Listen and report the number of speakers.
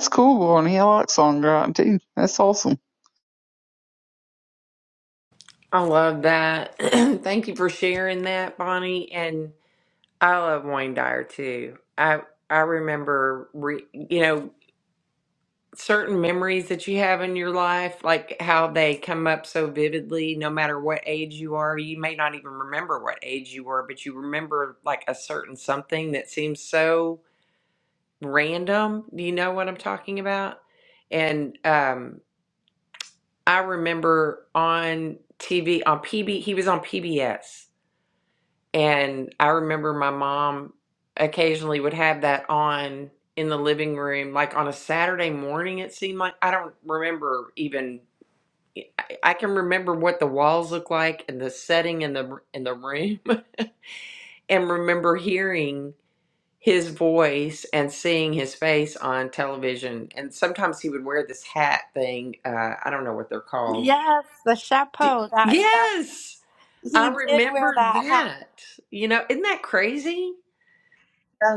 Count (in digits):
3